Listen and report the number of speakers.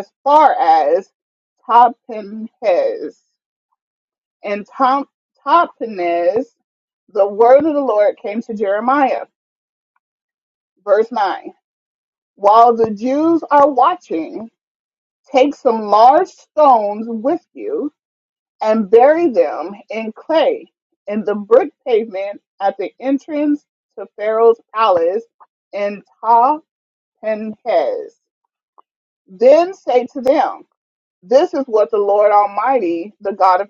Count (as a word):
one